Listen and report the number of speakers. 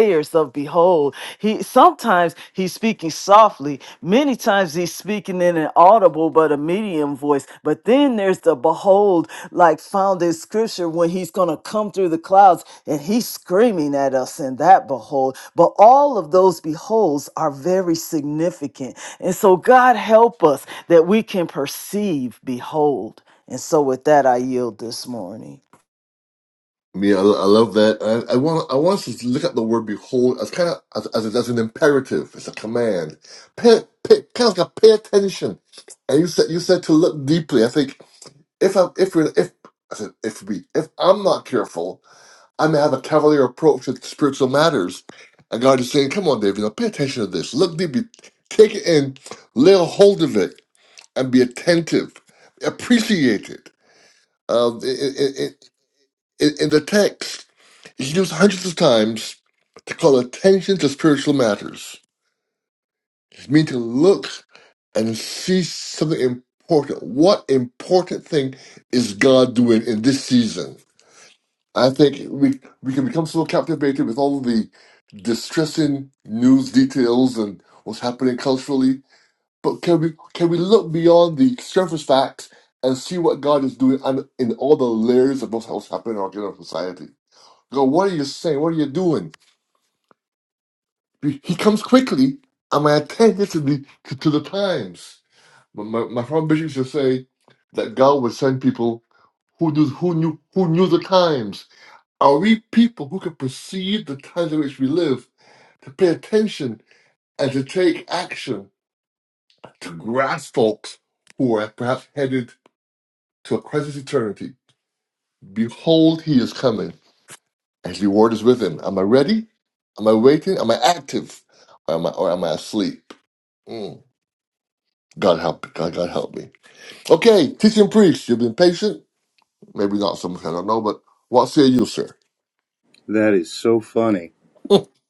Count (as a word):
three